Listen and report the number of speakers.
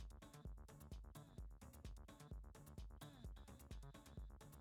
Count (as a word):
zero